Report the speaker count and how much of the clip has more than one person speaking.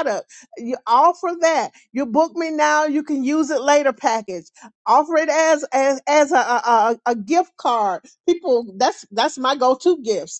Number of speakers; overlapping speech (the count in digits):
1, no overlap